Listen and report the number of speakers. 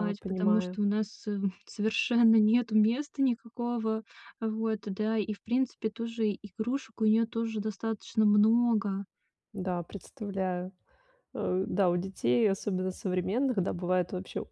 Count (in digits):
2